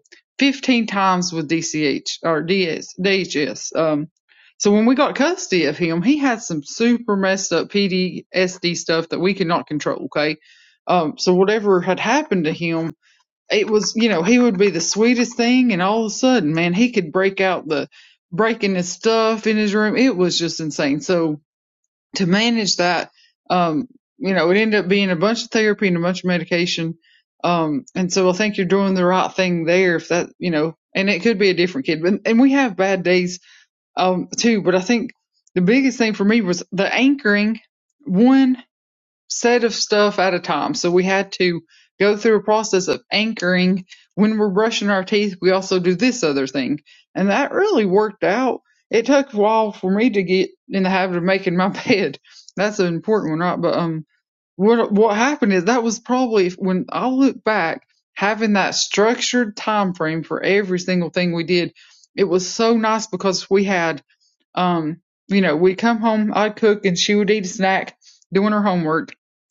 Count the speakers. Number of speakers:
1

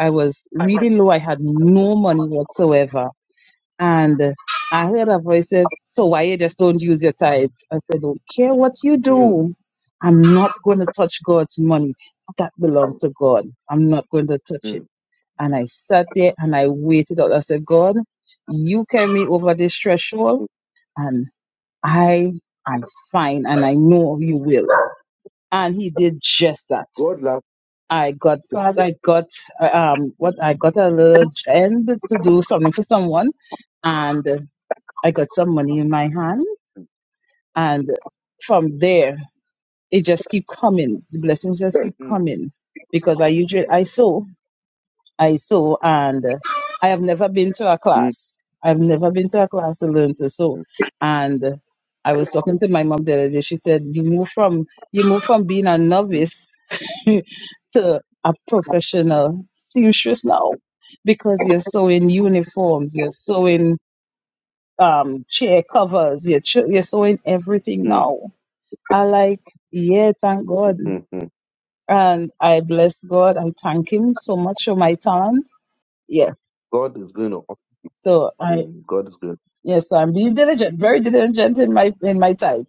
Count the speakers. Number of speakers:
2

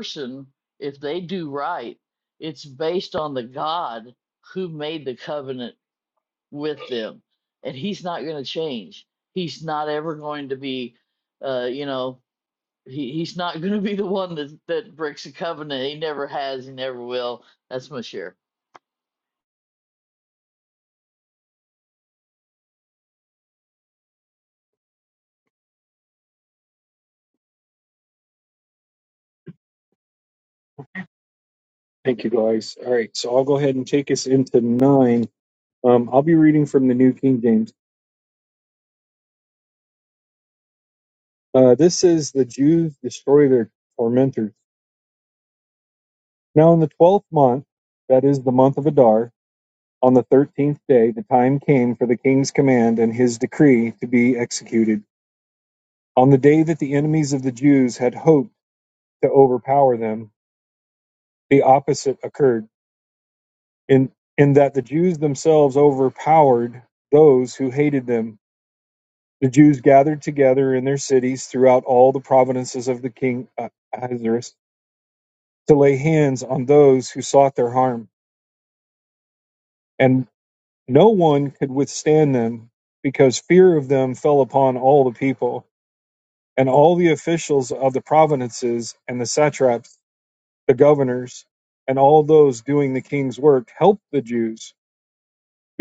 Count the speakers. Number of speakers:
2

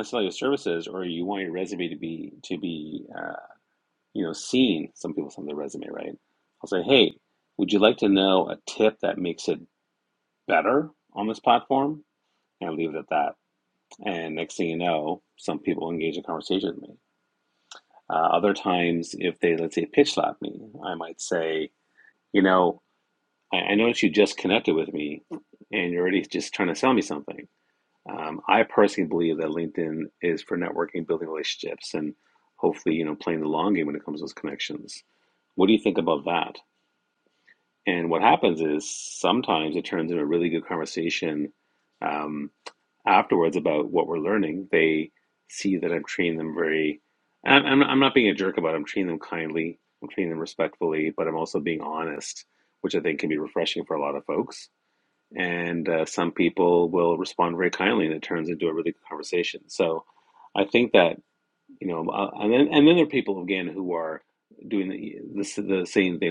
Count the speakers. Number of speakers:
1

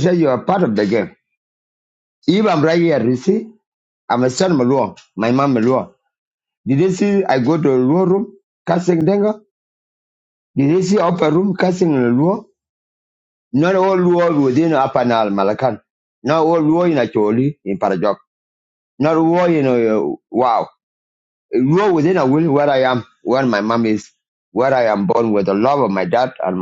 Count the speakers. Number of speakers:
1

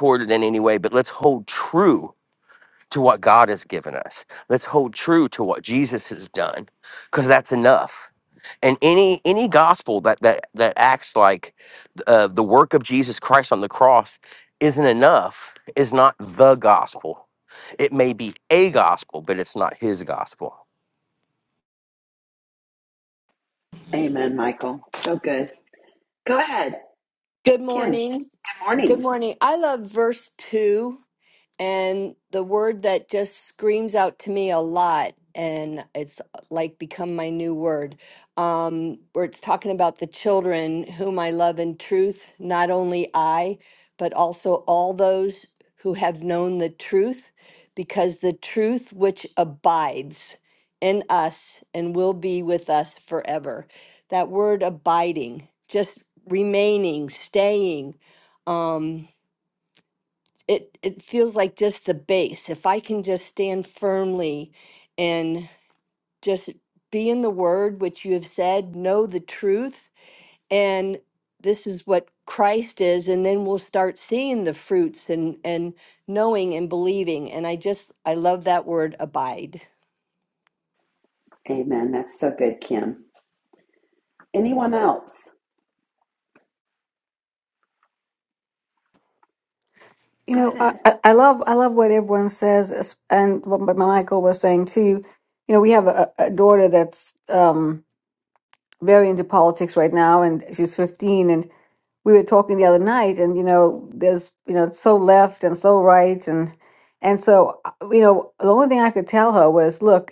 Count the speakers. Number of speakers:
4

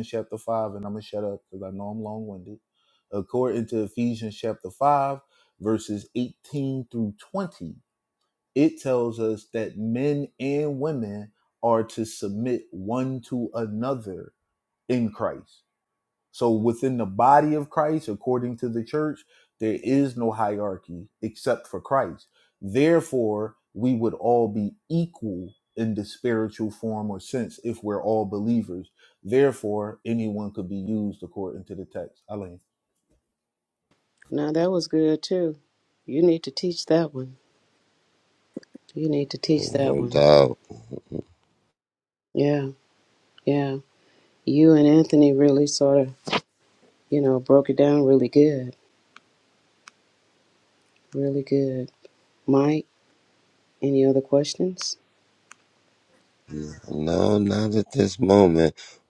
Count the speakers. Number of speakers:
3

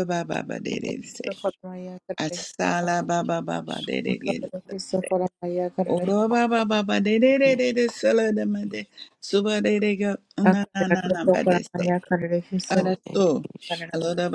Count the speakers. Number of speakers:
3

